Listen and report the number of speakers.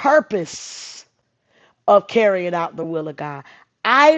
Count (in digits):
1